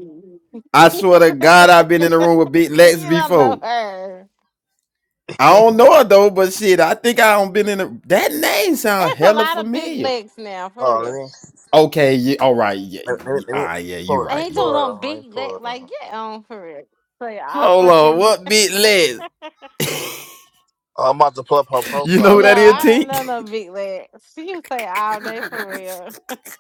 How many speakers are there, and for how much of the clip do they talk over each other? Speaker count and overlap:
three, about 26%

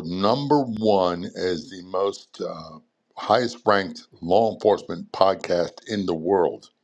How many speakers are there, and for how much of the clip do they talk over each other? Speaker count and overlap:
one, no overlap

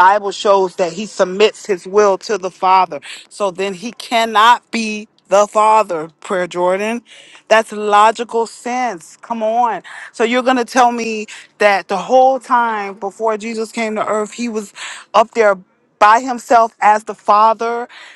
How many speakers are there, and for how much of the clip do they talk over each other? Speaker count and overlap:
one, no overlap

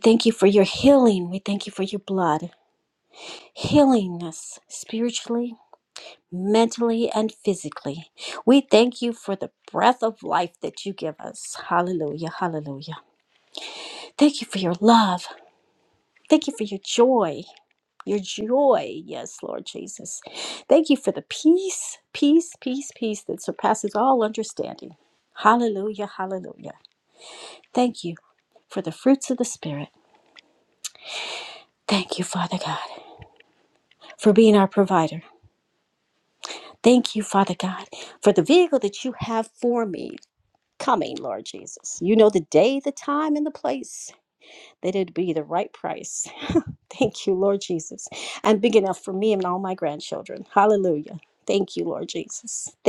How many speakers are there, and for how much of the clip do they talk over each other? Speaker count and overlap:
one, no overlap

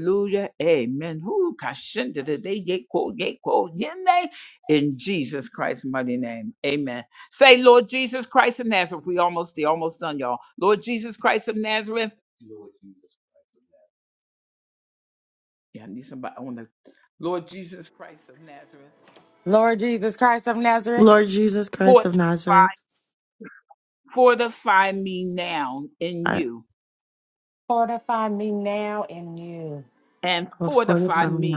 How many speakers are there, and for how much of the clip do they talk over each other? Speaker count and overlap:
three, about 4%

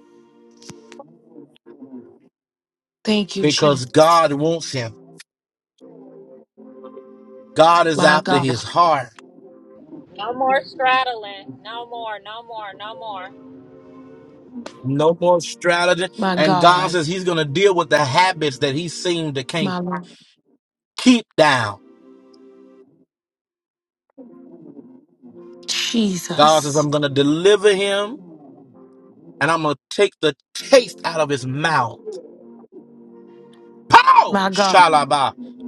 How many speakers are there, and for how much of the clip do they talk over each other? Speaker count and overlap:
three, about 10%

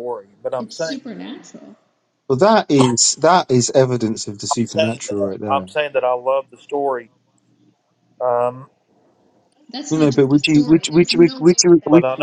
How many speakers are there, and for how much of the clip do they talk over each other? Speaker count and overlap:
three, about 34%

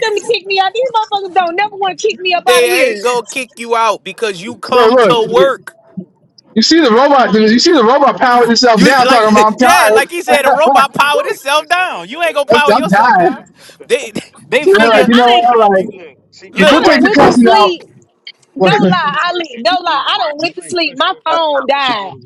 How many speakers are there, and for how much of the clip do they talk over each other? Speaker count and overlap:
four, about 42%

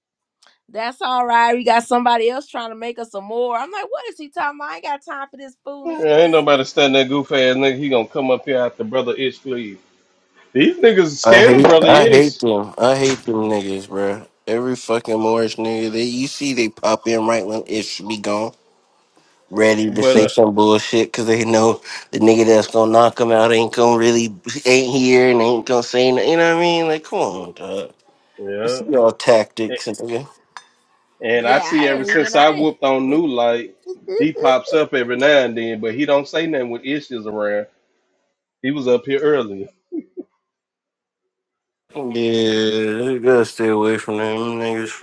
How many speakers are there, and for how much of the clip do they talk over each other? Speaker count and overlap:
three, about 8%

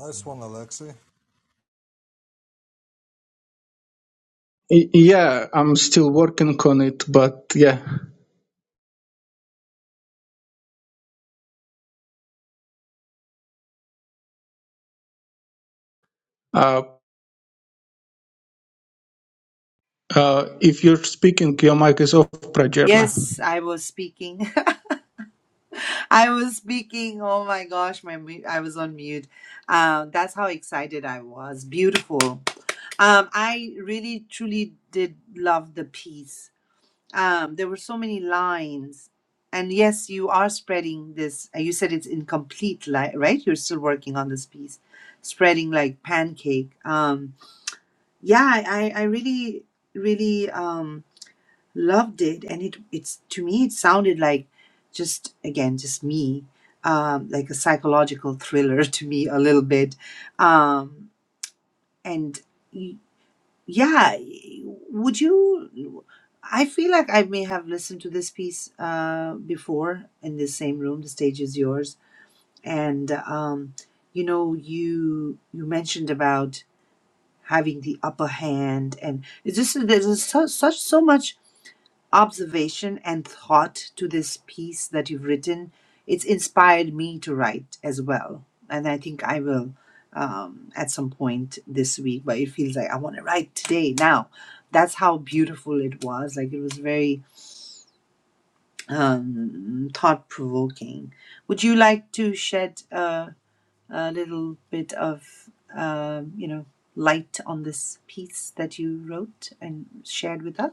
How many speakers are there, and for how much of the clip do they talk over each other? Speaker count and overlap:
three, under 1%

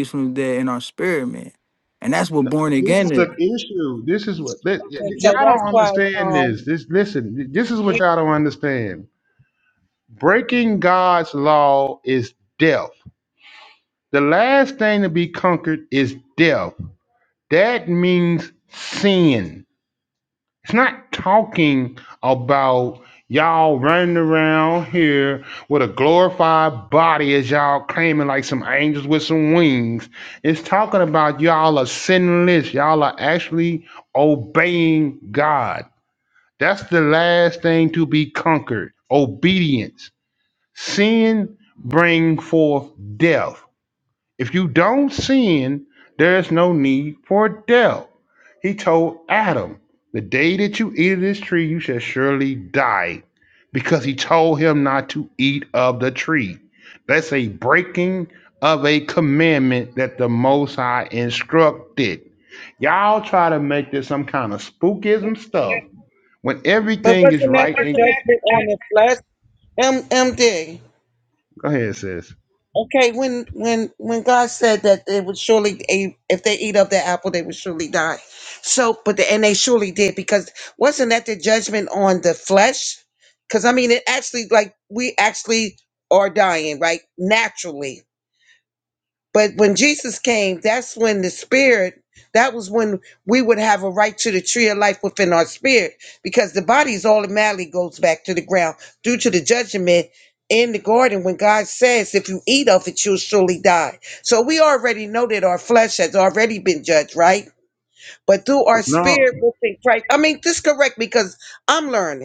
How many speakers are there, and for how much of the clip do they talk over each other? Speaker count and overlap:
three, about 4%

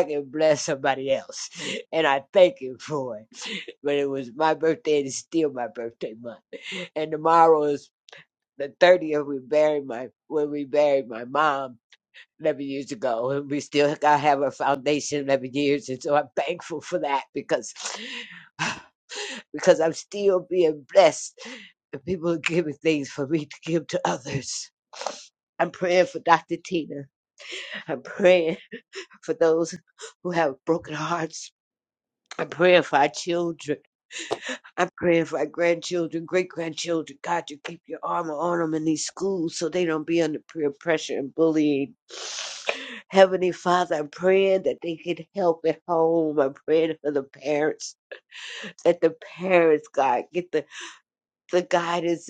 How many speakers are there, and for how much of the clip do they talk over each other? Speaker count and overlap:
one, no overlap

